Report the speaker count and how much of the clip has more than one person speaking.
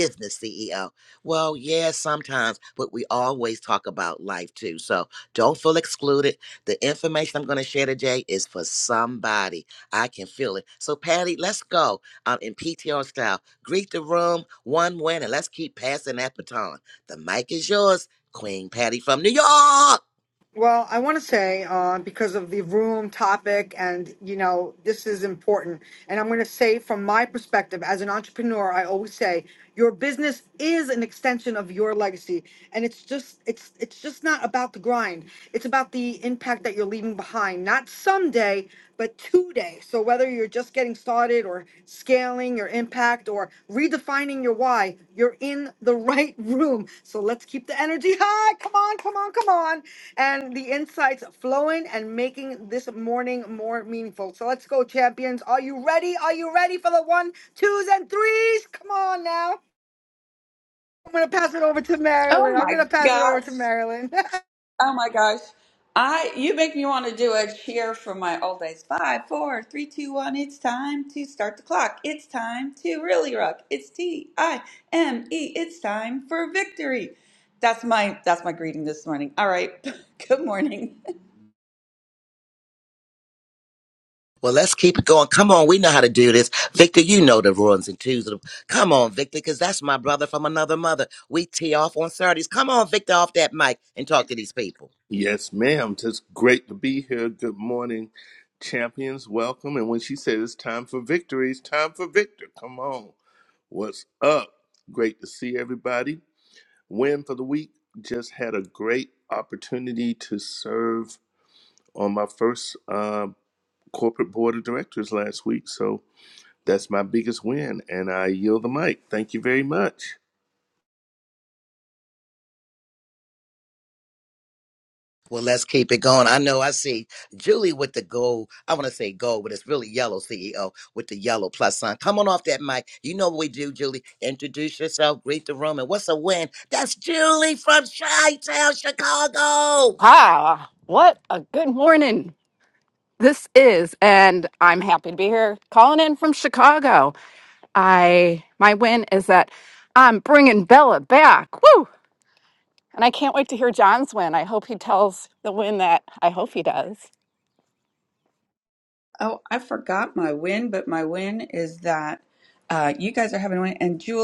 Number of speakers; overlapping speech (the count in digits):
5, about 1%